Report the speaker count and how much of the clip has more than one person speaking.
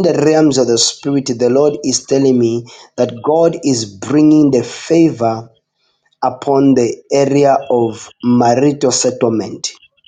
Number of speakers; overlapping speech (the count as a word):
one, no overlap